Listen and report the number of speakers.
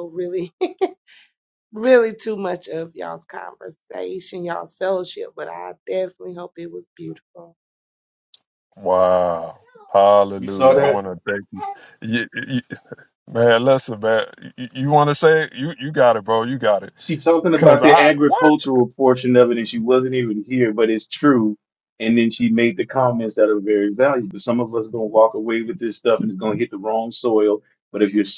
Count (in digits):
3